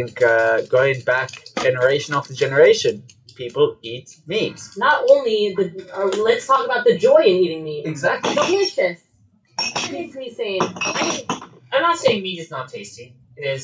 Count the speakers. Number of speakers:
three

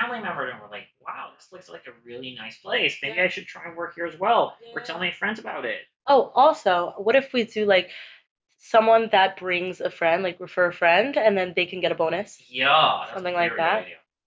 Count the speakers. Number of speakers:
two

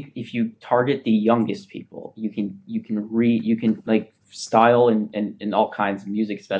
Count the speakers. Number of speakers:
one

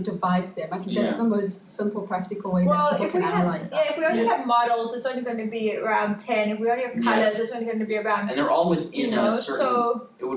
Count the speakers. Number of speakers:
three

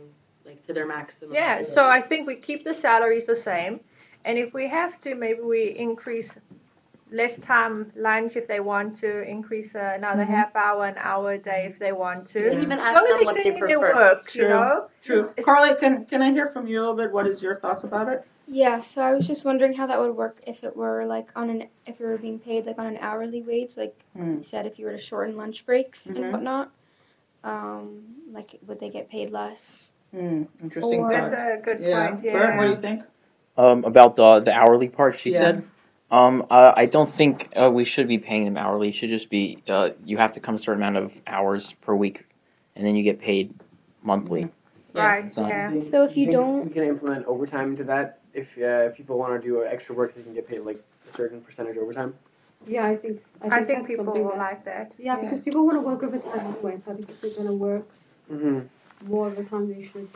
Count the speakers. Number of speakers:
seven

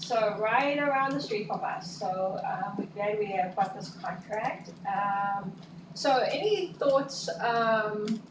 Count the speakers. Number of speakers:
one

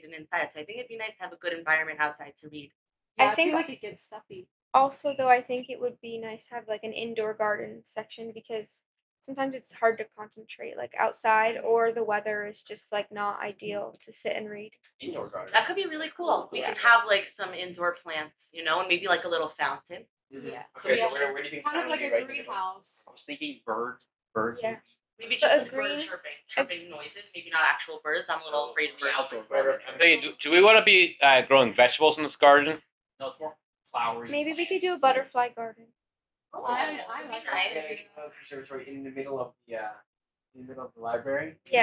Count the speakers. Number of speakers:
six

